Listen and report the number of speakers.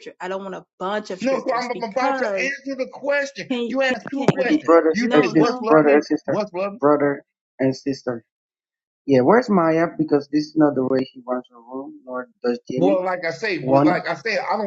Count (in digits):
3